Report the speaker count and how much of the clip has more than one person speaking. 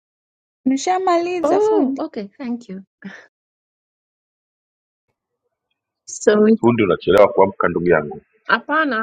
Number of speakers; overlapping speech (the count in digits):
3, about 6%